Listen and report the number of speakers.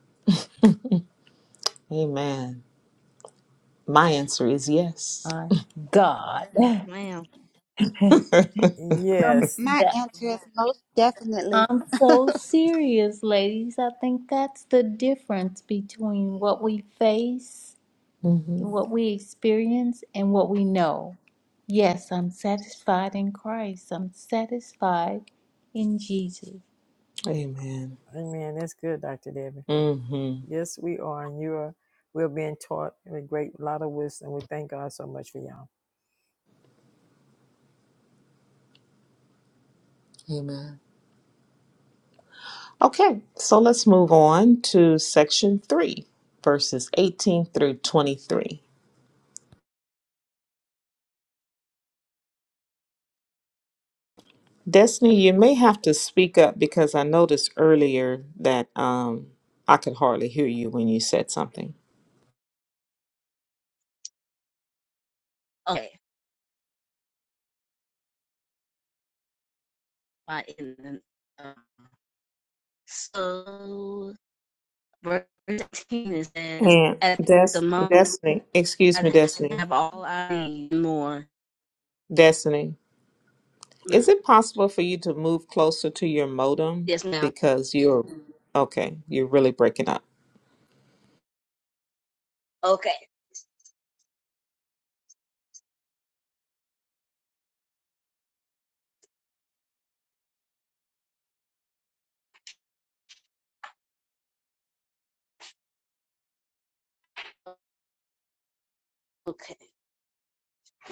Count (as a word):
five